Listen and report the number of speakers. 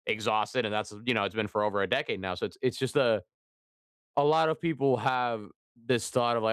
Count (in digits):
1